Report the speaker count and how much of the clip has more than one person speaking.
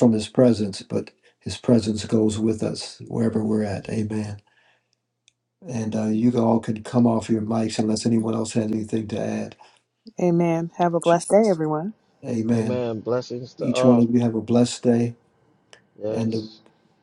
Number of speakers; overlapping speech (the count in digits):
3, about 5%